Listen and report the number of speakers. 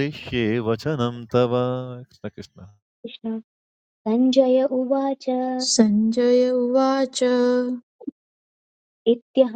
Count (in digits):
3